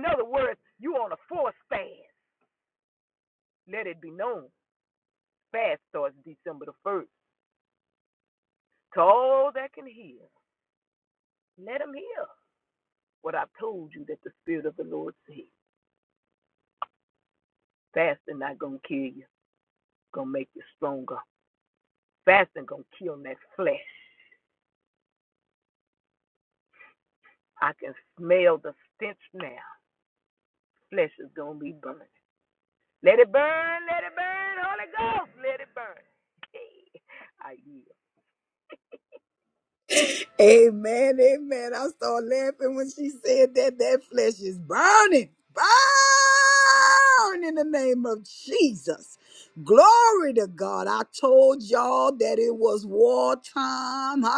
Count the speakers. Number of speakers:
2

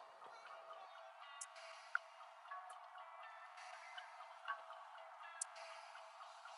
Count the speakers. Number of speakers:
0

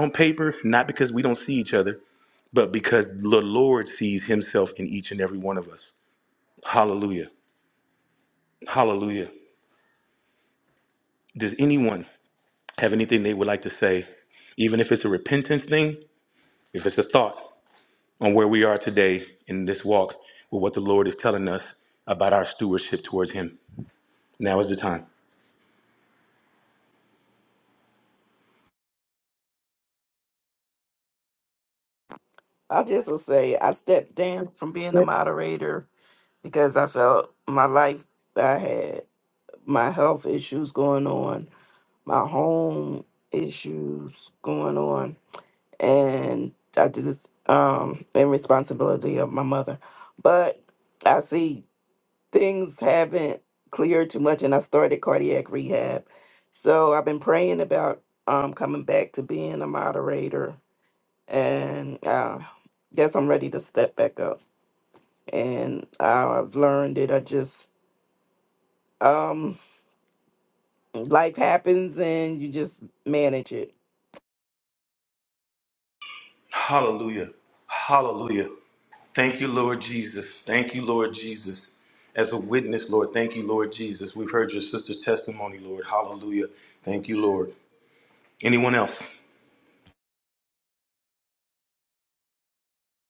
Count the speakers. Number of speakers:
2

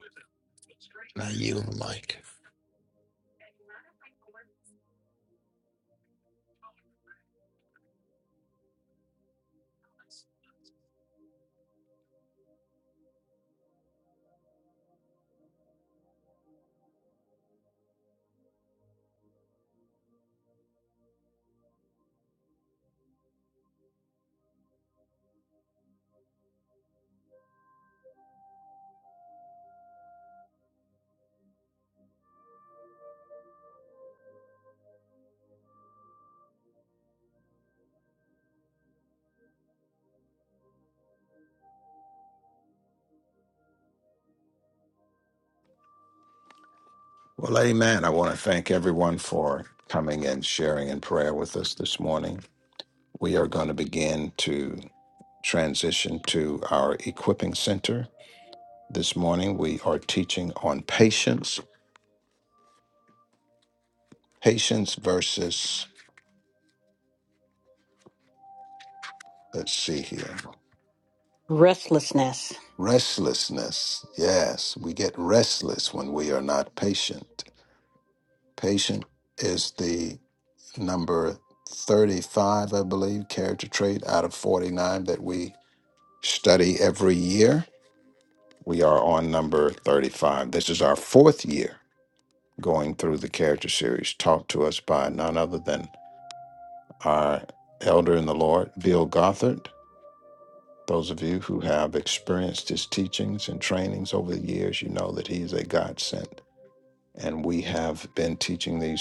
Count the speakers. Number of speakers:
3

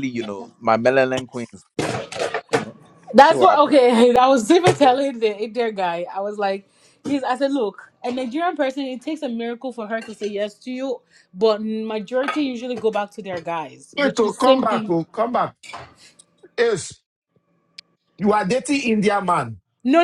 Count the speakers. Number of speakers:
3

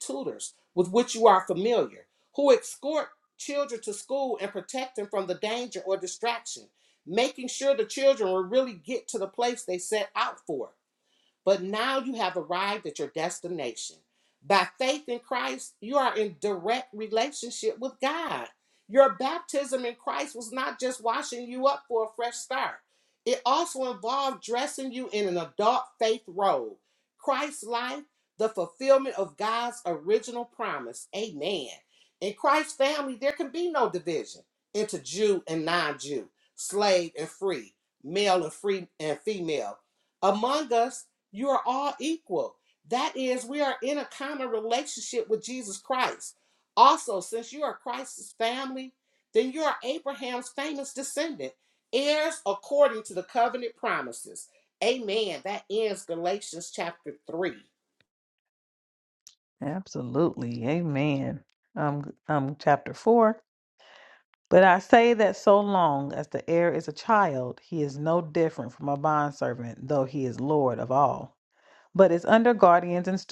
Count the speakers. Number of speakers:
2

